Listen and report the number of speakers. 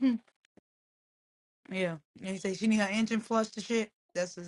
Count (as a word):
one